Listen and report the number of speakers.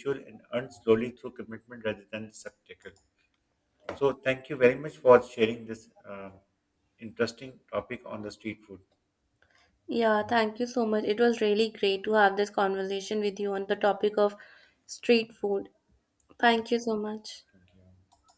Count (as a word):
two